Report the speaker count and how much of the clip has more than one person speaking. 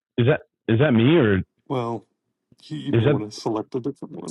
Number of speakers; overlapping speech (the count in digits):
2, about 6%